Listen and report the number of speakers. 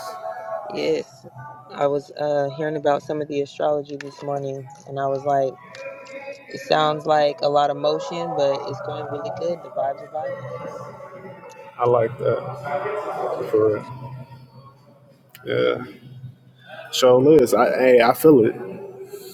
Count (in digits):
2